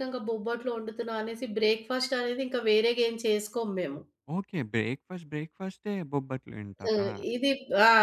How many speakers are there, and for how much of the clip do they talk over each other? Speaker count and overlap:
2, about 4%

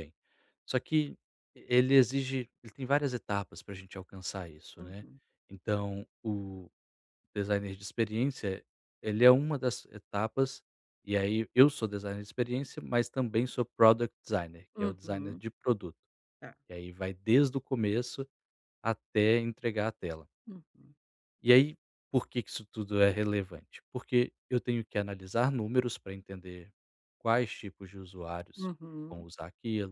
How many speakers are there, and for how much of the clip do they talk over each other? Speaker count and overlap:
2, about 3%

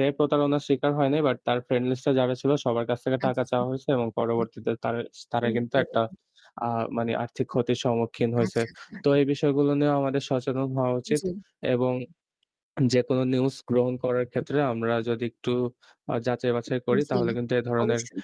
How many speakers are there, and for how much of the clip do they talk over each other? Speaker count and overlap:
2, about 10%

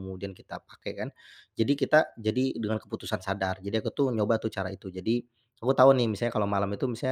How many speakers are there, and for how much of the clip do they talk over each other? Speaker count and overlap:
1, no overlap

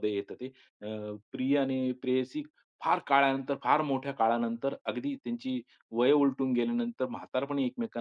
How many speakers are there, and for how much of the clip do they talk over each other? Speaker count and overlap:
1, no overlap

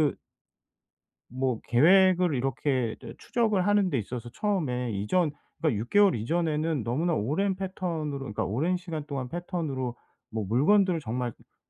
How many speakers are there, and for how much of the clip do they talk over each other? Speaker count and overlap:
1, no overlap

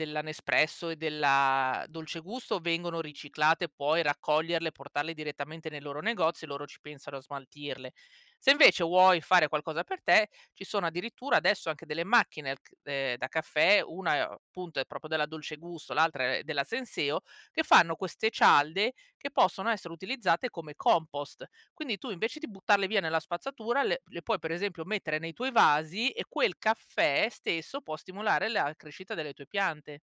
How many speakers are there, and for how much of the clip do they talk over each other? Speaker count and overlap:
1, no overlap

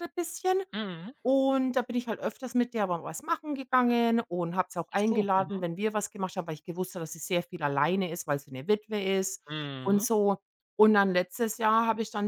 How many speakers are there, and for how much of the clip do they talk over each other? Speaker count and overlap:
2, about 7%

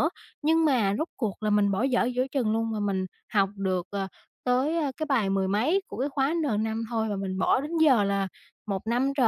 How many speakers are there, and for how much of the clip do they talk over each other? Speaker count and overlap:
1, no overlap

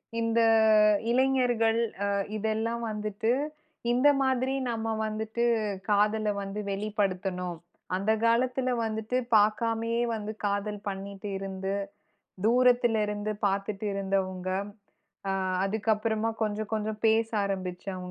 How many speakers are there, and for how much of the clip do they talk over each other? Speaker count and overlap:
1, no overlap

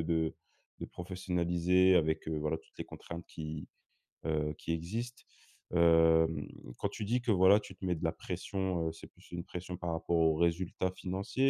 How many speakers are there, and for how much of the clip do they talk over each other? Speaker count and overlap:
1, no overlap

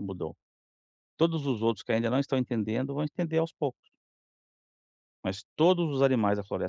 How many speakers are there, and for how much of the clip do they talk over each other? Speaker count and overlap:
1, no overlap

